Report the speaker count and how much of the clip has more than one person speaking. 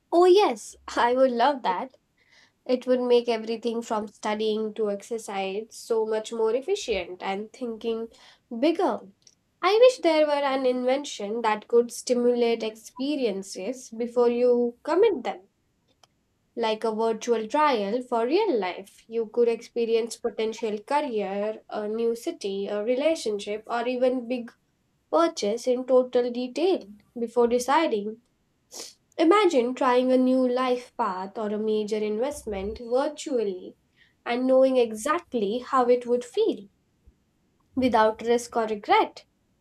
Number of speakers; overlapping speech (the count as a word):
one, no overlap